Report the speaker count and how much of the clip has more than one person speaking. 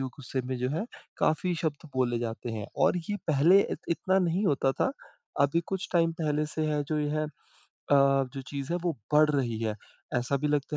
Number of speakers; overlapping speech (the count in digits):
1, no overlap